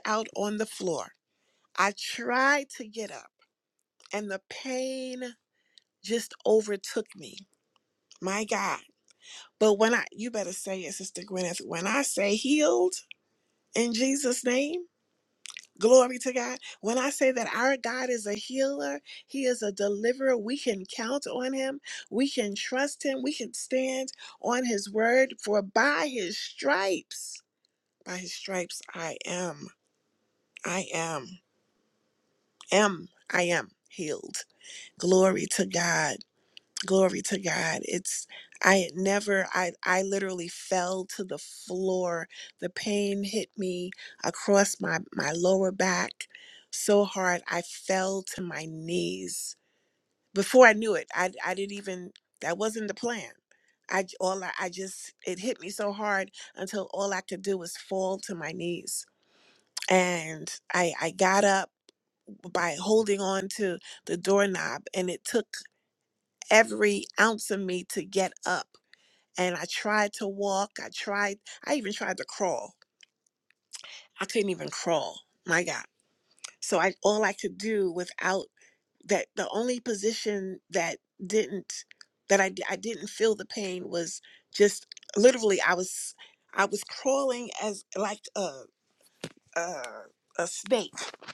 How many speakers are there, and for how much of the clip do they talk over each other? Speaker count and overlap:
1, no overlap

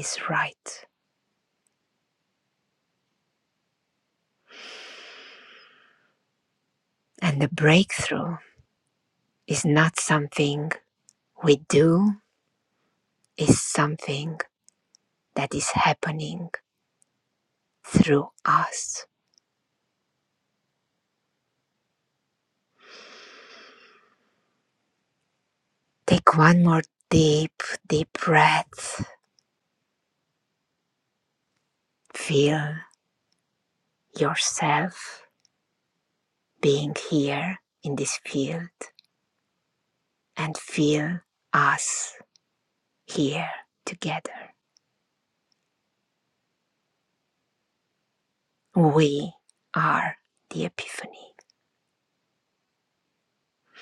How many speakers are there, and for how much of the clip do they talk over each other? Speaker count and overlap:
1, no overlap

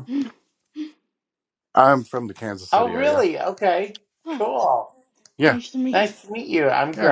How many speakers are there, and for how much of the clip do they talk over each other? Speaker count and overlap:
3, about 17%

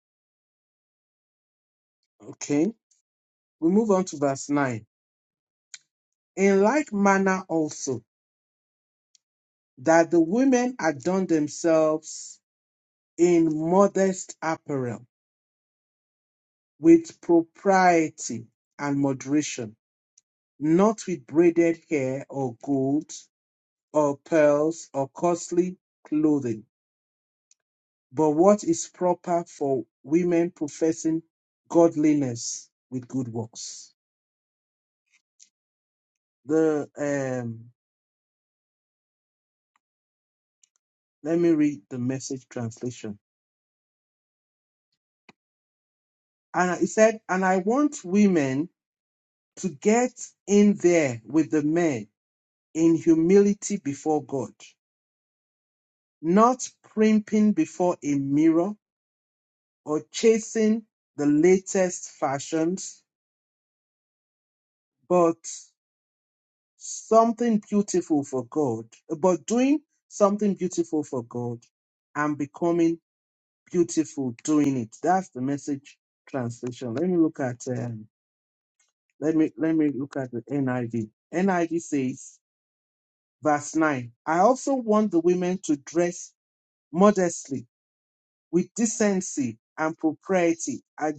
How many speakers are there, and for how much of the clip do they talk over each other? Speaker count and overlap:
1, no overlap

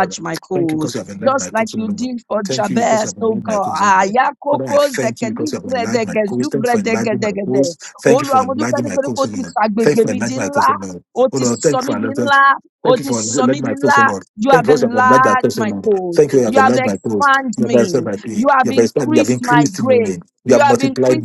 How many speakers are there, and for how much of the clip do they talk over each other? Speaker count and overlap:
2, about 79%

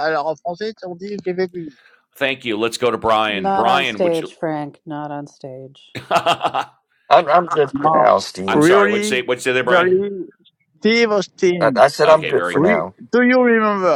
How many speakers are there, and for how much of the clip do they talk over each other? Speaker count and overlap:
4, about 25%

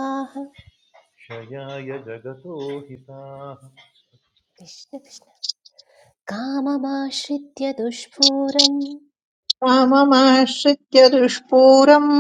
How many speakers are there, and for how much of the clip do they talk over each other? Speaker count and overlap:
3, no overlap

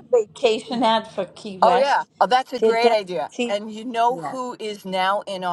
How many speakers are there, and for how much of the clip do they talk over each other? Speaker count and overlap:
2, about 18%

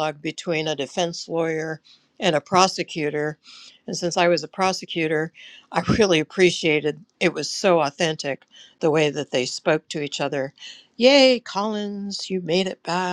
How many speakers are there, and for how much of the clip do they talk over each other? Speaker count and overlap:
1, no overlap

